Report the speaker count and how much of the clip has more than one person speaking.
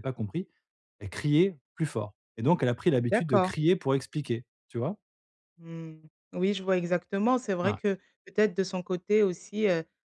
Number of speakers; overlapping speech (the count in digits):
2, about 6%